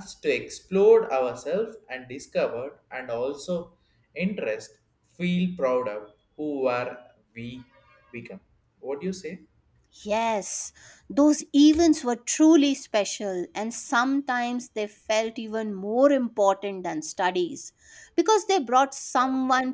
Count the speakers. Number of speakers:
two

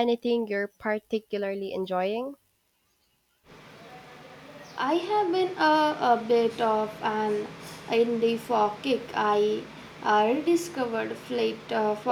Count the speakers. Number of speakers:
two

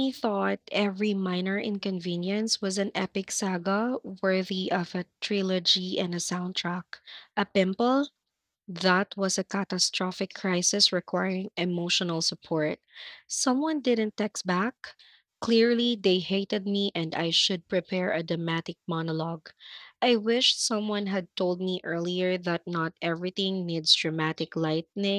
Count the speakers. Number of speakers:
one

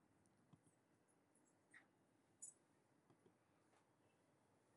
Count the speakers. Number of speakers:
zero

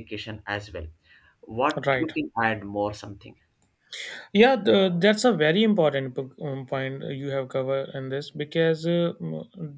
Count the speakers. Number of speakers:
two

